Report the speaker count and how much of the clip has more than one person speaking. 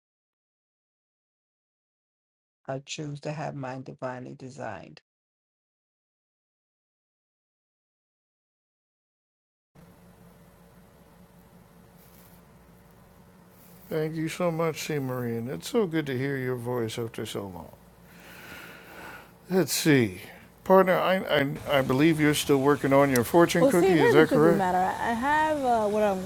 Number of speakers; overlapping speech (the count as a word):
three, about 4%